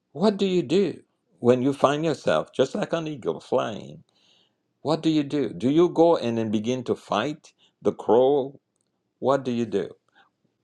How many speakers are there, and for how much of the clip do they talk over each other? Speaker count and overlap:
1, no overlap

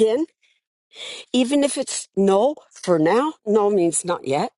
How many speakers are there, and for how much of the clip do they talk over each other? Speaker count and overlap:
1, no overlap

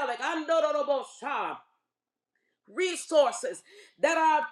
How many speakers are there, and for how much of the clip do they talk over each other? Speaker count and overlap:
1, no overlap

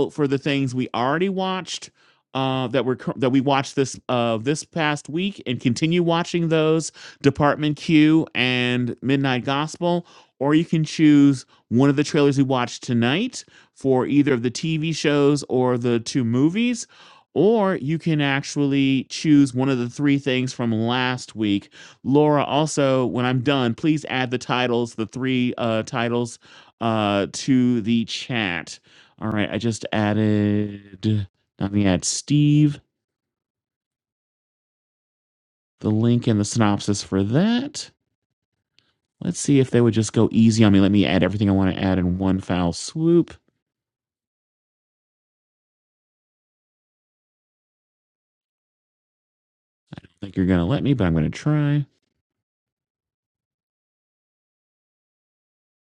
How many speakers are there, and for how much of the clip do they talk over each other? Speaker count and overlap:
1, no overlap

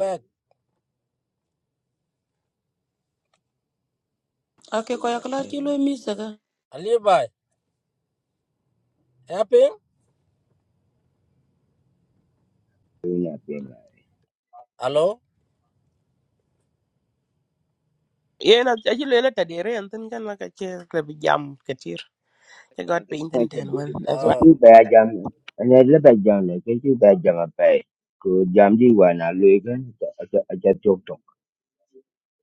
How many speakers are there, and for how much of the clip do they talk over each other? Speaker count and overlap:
4, about 1%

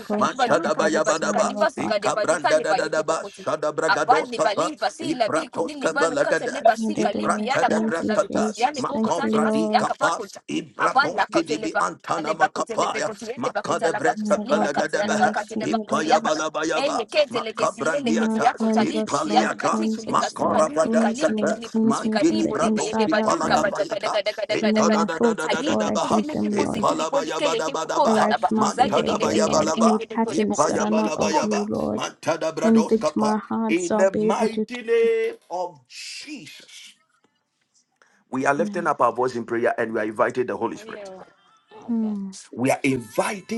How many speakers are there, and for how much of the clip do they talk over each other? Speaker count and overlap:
3, about 66%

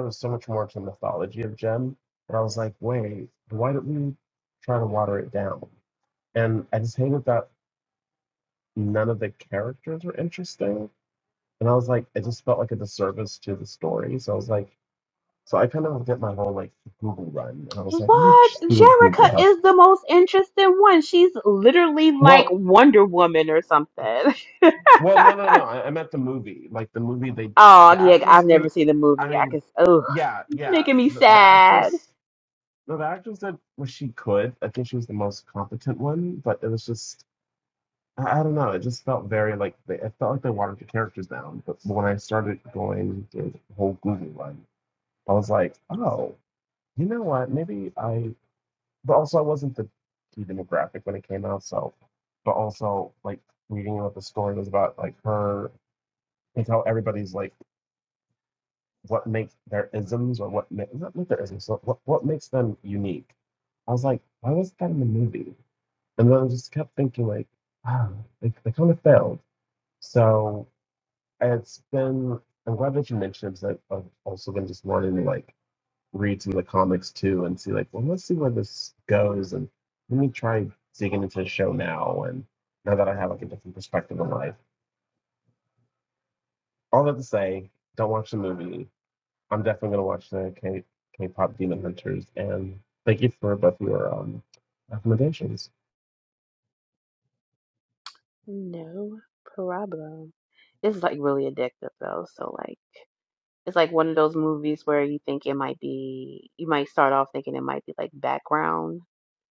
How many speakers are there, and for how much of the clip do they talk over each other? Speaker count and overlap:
2, about 4%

